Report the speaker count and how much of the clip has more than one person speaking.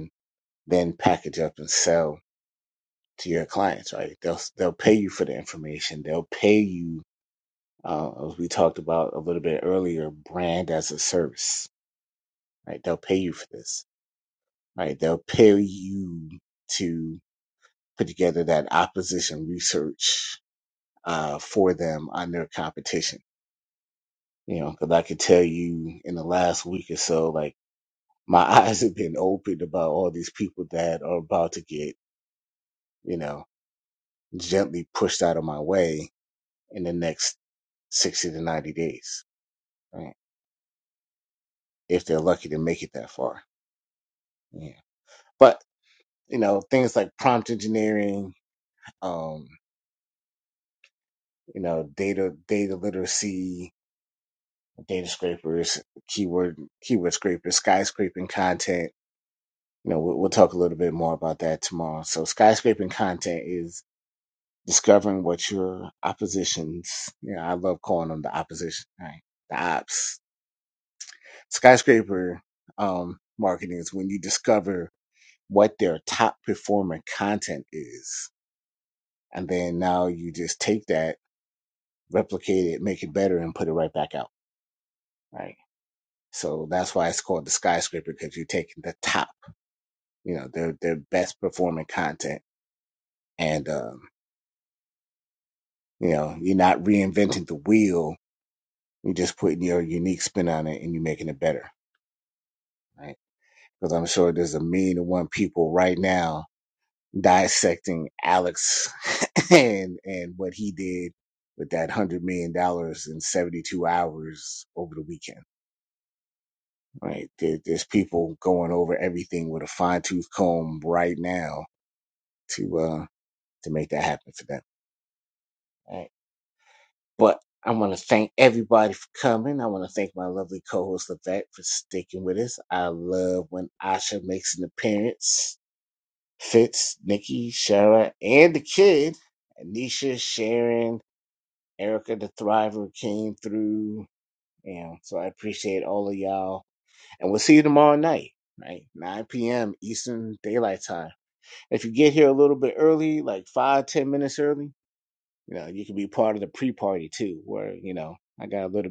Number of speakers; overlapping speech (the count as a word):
one, no overlap